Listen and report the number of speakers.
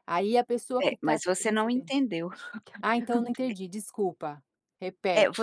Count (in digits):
2